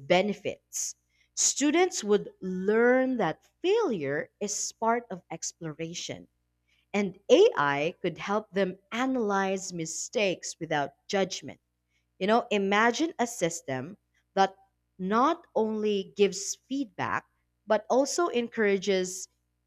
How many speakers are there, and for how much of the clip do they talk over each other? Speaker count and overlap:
one, no overlap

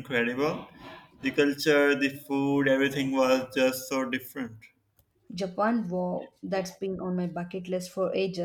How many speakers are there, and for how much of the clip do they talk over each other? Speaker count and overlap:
two, no overlap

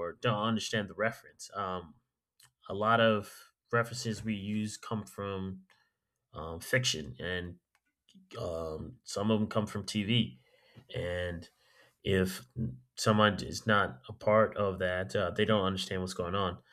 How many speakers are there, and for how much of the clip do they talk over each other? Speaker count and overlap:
one, no overlap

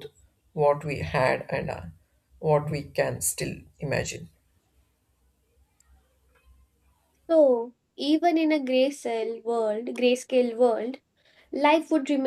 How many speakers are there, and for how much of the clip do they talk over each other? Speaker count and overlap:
two, no overlap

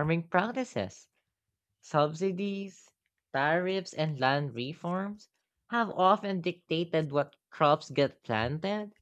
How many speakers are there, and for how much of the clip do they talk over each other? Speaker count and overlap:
one, no overlap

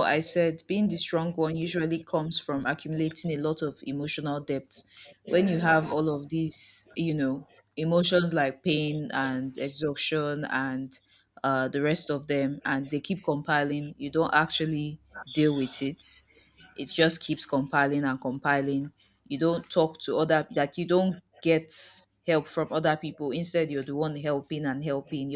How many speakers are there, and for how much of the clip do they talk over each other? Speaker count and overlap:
one, no overlap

